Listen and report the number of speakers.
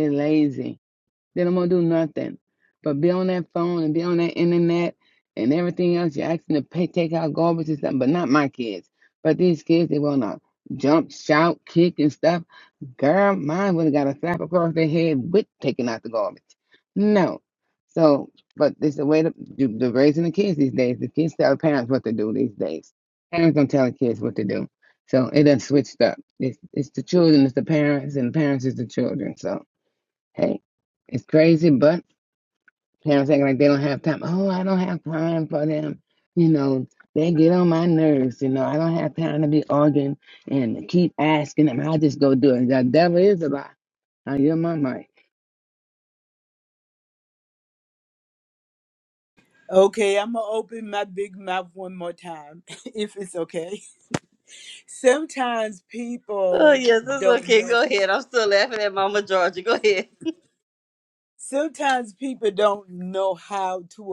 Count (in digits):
3